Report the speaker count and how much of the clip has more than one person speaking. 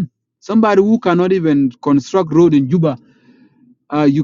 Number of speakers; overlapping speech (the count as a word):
one, no overlap